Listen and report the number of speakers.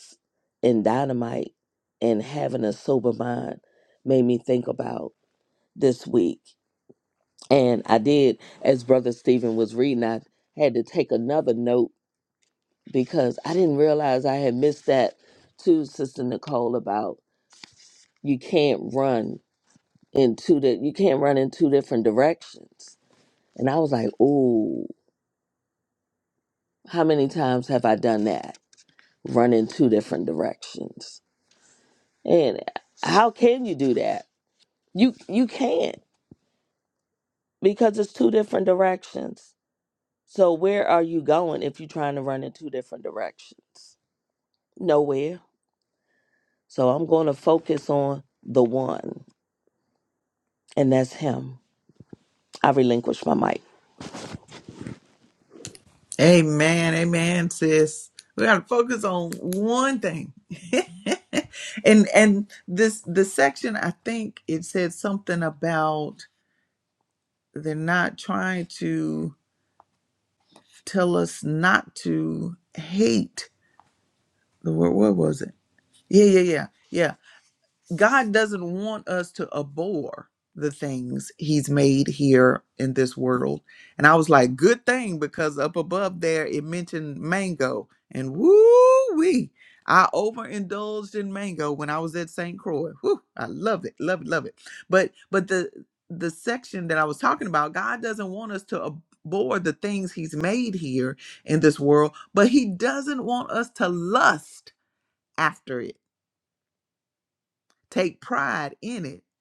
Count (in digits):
2